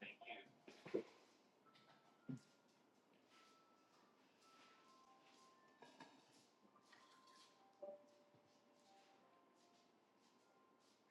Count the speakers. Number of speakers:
zero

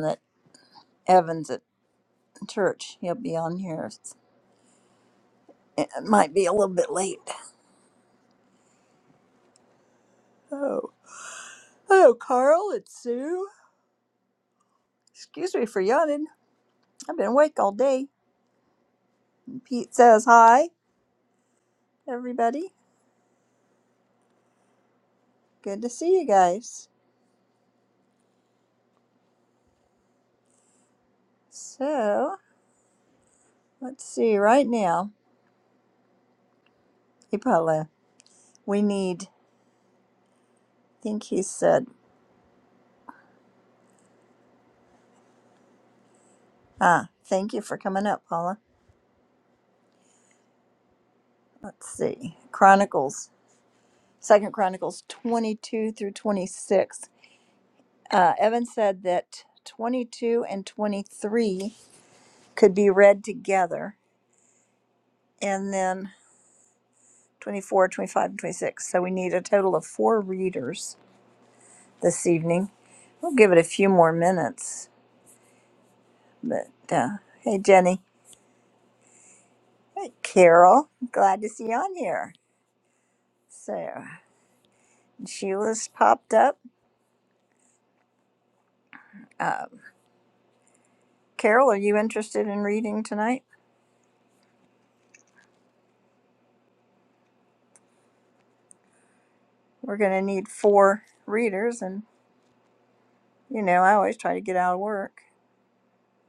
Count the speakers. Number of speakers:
one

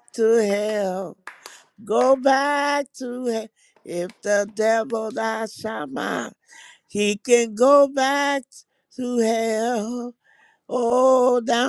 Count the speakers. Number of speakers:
one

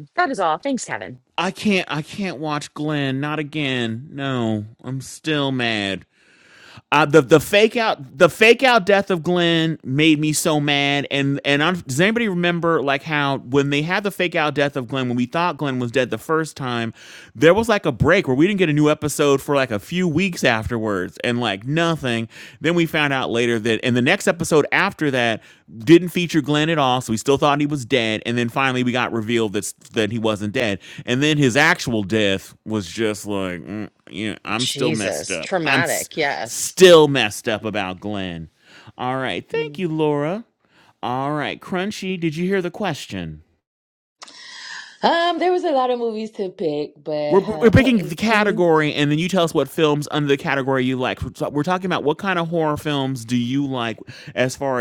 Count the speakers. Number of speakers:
three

